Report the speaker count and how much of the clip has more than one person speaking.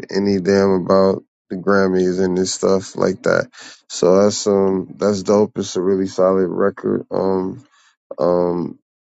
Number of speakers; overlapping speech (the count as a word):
one, no overlap